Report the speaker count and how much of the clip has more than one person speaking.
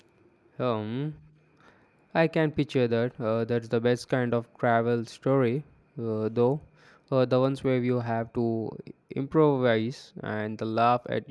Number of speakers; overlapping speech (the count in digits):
1, no overlap